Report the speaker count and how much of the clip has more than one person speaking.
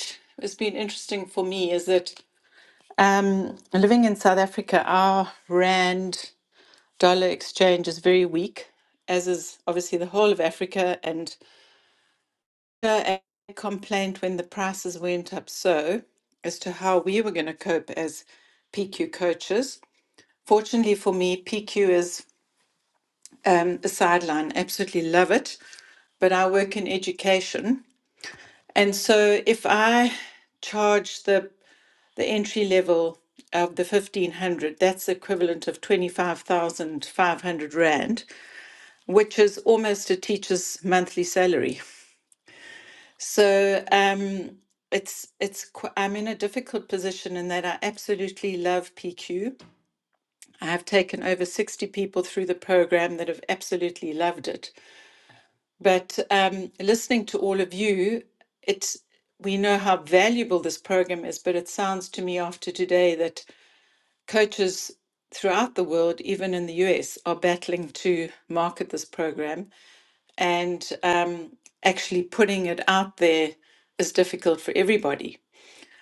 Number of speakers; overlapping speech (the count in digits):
1, no overlap